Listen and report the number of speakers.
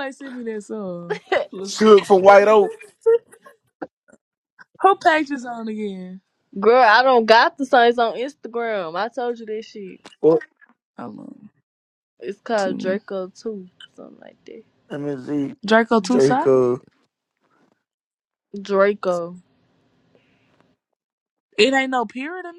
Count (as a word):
three